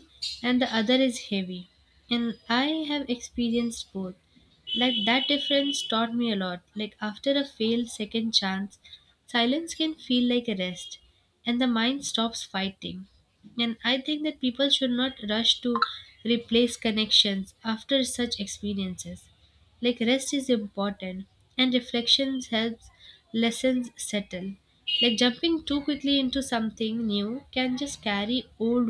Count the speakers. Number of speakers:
one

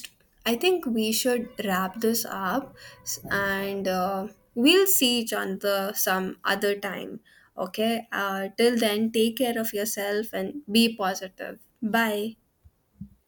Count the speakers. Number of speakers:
one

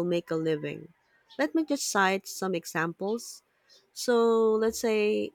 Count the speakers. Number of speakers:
one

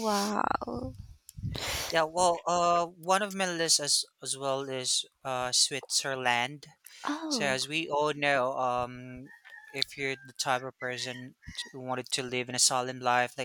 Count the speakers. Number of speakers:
two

